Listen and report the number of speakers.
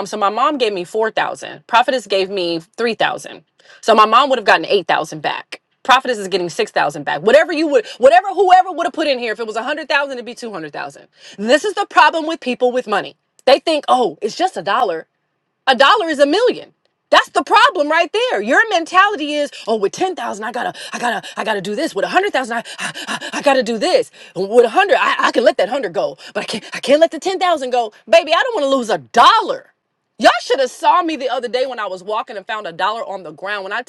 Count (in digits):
1